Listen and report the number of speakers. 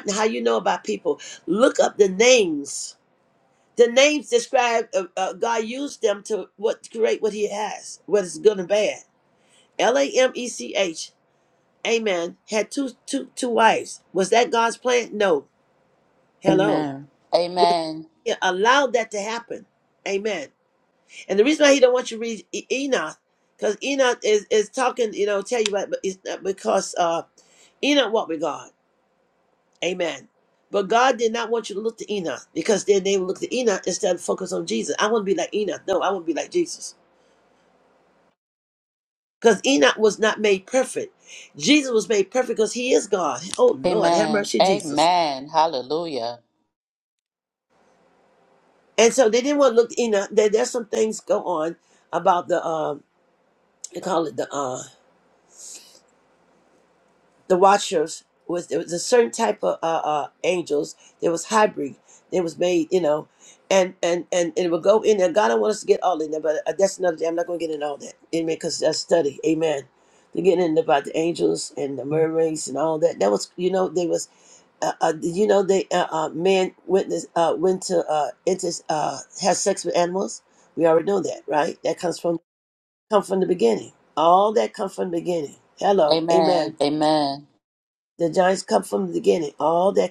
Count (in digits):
2